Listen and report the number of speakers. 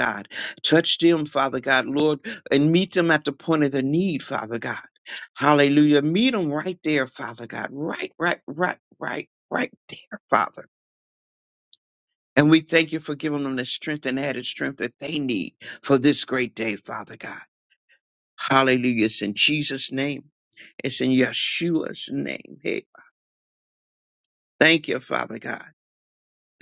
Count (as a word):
one